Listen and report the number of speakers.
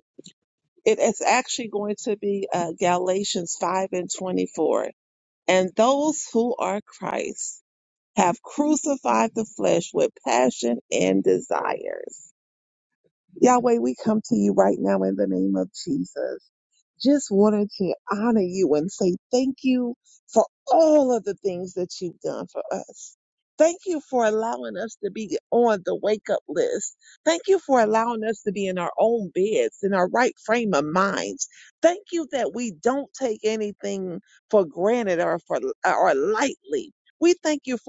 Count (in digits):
1